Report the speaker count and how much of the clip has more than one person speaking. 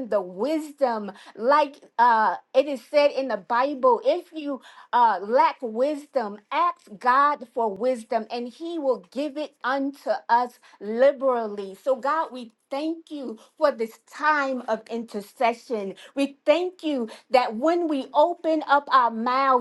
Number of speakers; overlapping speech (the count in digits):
1, no overlap